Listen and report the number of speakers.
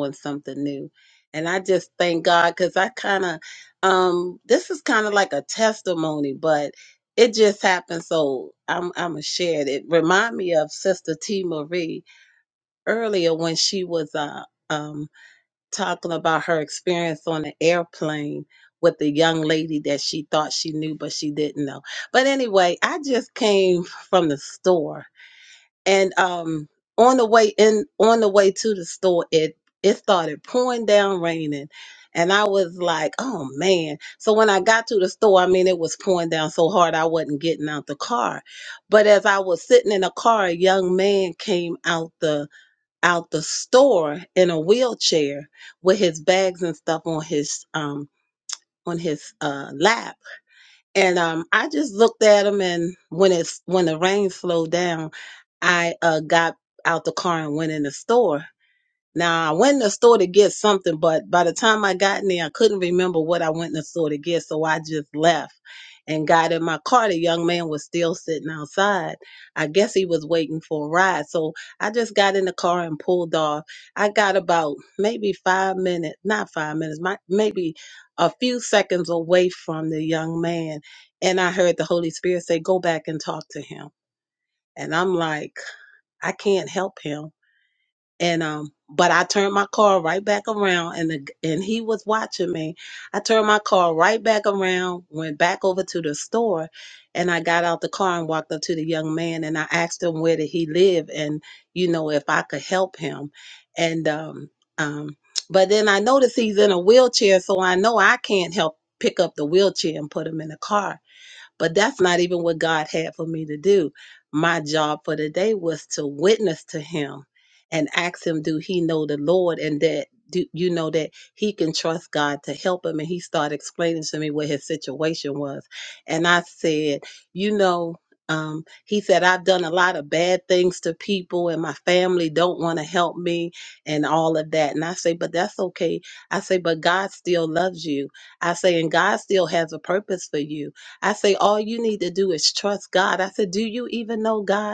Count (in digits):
1